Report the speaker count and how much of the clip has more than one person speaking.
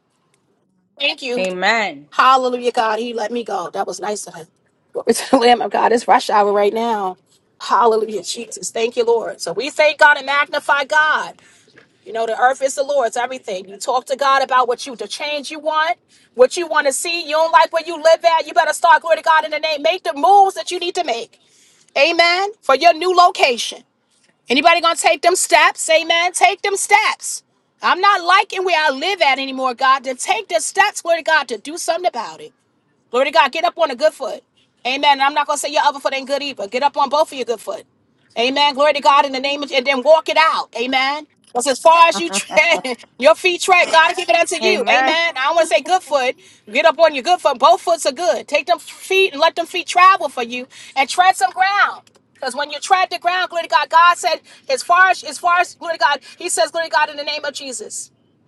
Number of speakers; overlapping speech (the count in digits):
2, about 1%